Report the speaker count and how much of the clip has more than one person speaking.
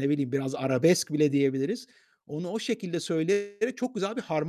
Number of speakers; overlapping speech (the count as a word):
one, no overlap